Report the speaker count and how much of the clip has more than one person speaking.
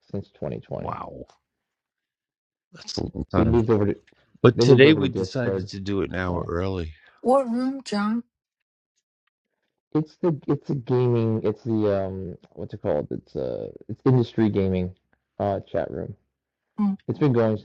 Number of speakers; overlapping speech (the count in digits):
3, about 9%